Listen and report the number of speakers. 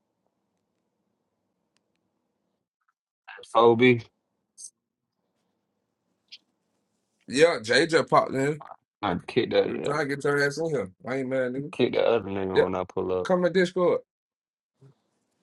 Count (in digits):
2